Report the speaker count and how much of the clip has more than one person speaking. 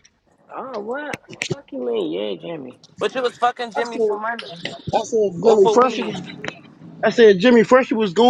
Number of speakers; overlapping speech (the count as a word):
three, about 14%